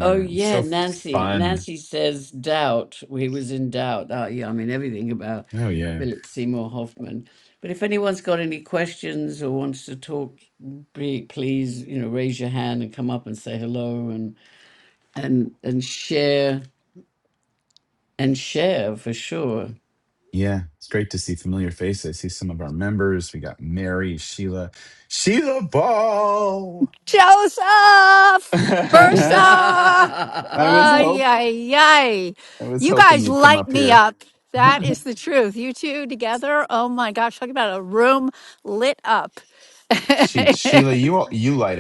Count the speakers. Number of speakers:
3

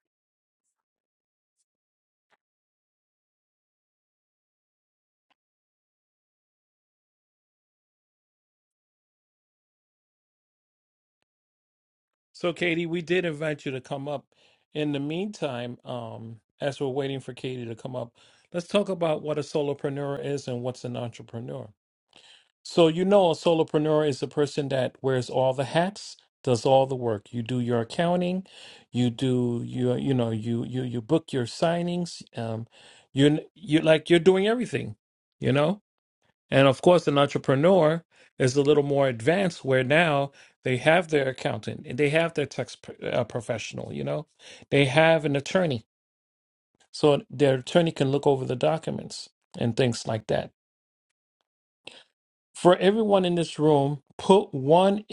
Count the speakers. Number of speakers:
1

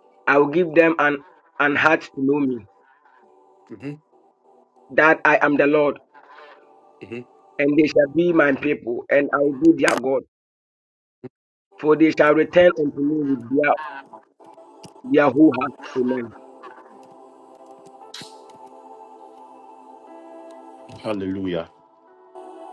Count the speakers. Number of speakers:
2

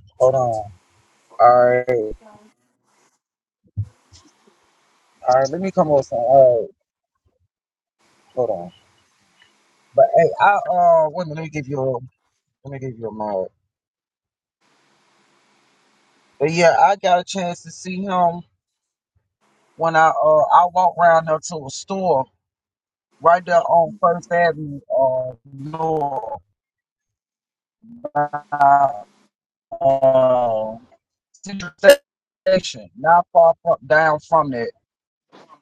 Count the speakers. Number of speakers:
1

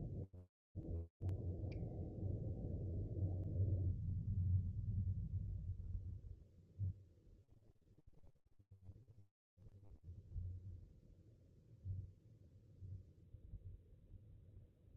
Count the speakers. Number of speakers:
0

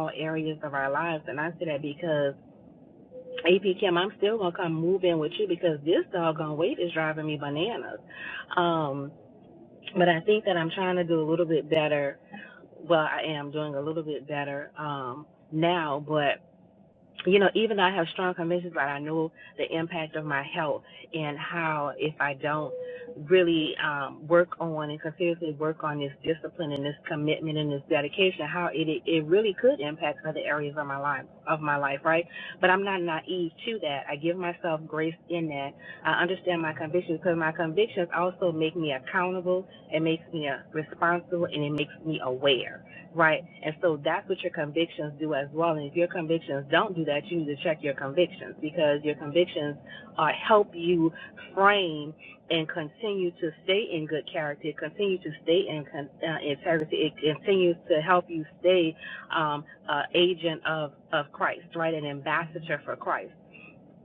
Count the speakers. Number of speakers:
1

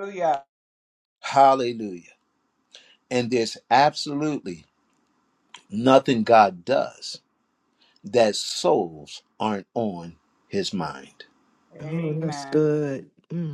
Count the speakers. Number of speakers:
3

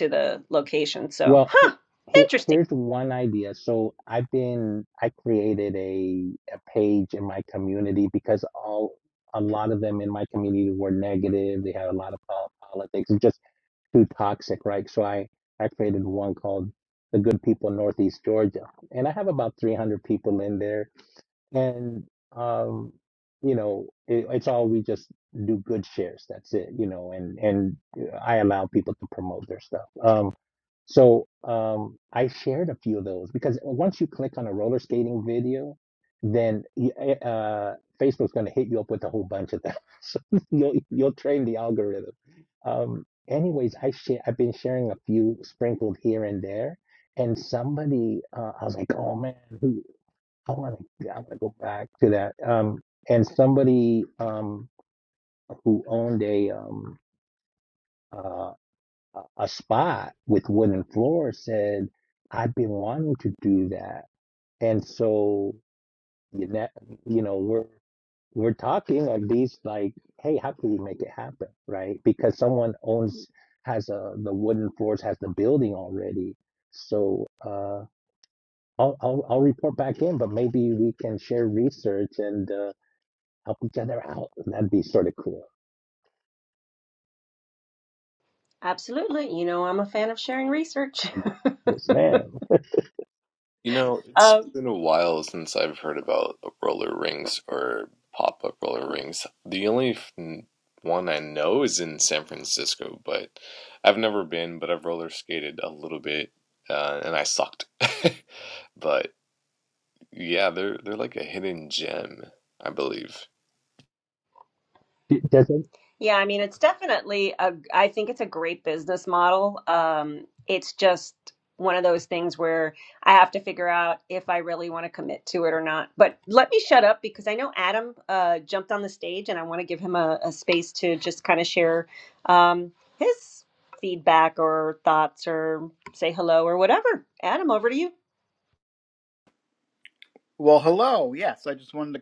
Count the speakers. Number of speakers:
4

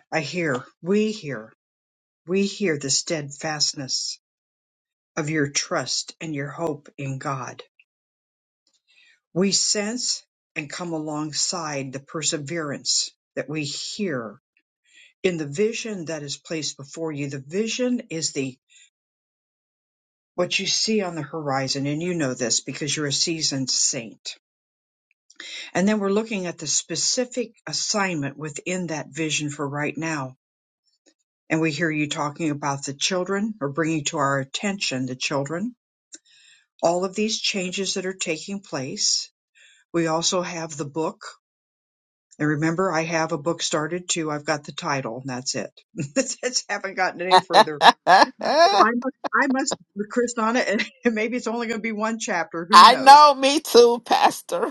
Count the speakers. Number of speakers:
2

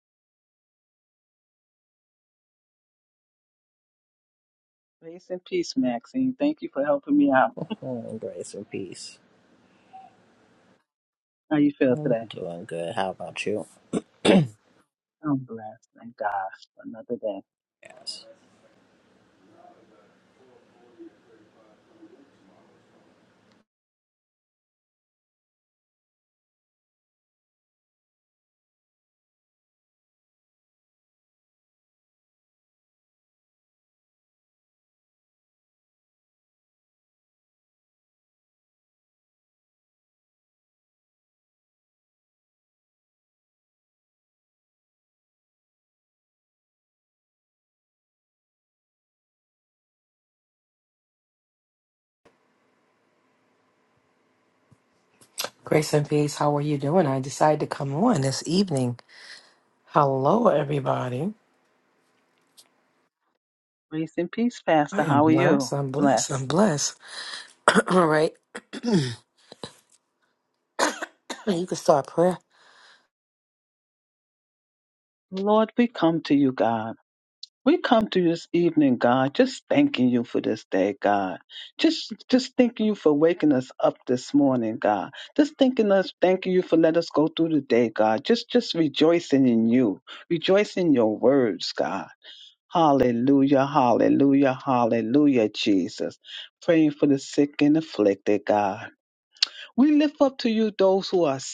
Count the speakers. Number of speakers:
3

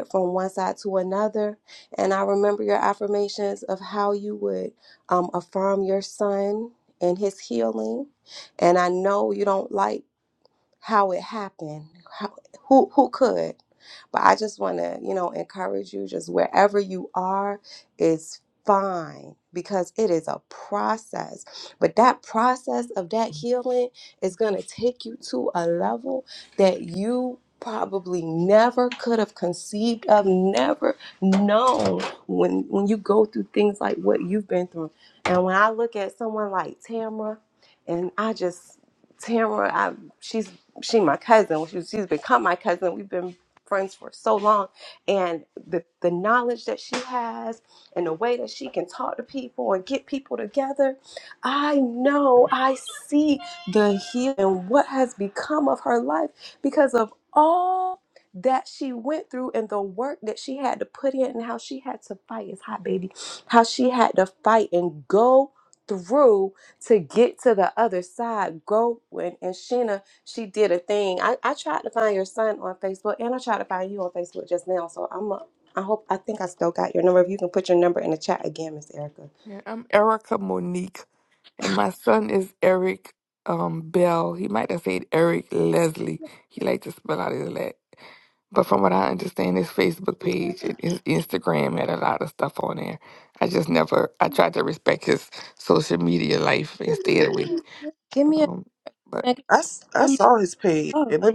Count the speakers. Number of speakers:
3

